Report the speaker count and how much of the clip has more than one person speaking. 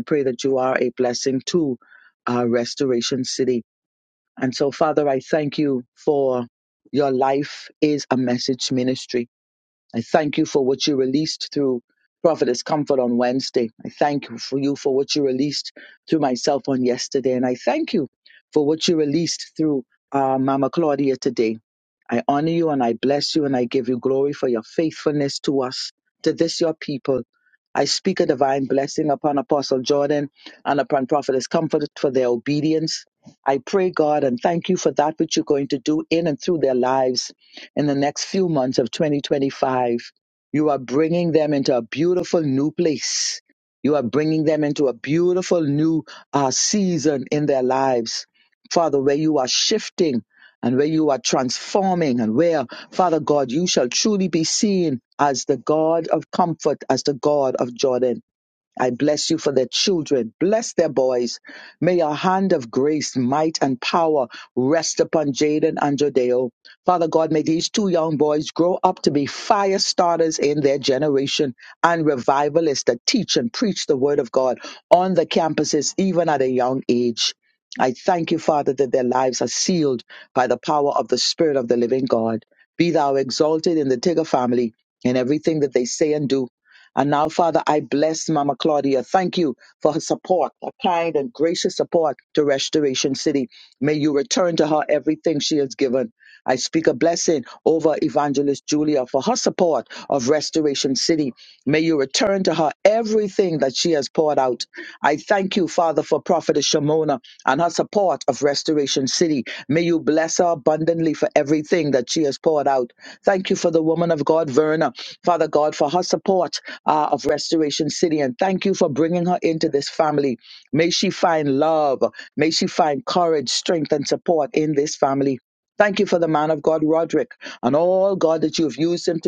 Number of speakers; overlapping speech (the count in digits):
1, no overlap